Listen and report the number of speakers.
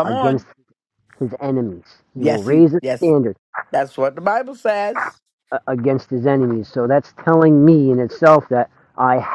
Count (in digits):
2